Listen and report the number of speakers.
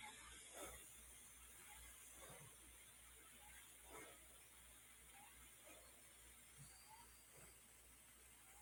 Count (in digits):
0